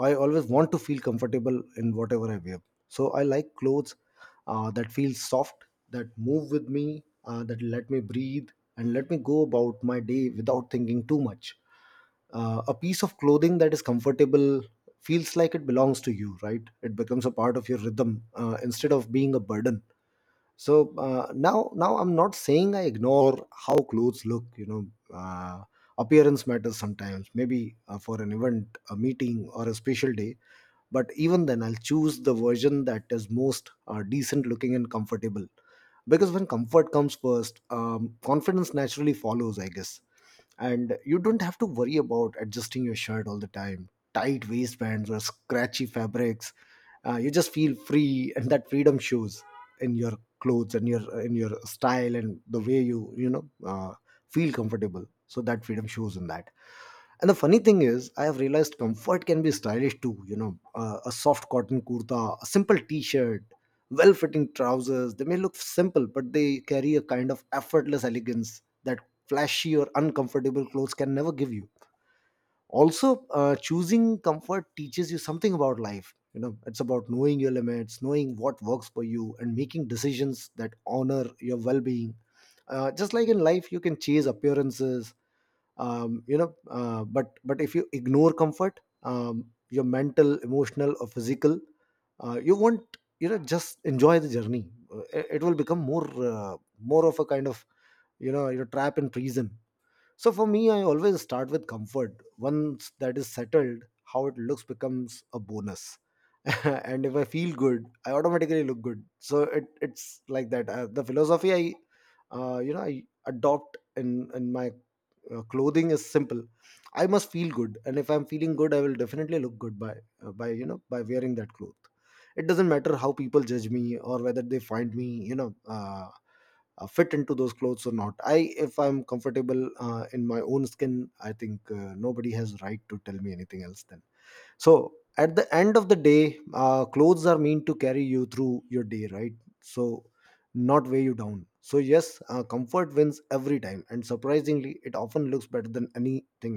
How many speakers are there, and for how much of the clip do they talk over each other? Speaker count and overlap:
one, no overlap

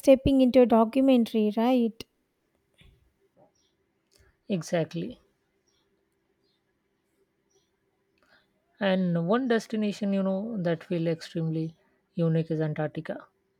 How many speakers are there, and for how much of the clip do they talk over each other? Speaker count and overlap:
two, no overlap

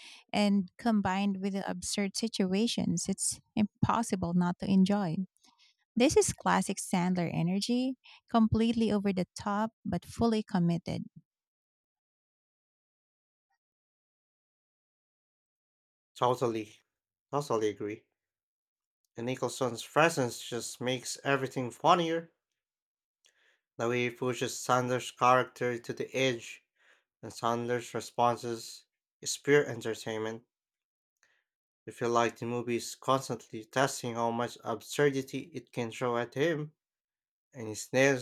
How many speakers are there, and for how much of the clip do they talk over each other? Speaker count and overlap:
two, no overlap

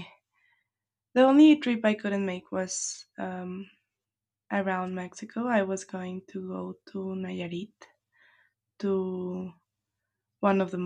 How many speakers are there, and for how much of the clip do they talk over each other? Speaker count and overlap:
one, no overlap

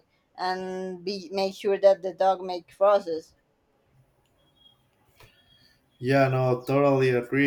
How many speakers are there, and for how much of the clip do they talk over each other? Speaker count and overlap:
two, no overlap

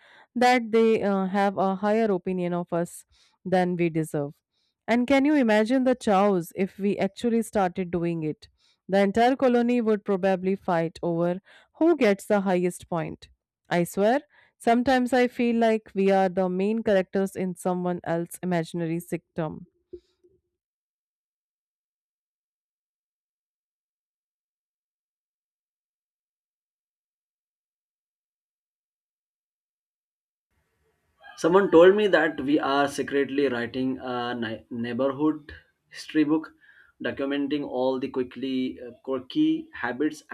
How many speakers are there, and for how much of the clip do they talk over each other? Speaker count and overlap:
two, no overlap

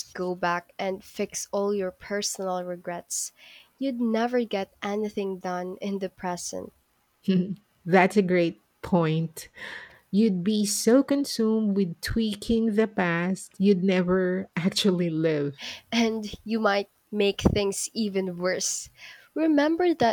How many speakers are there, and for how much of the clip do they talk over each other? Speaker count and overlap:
two, no overlap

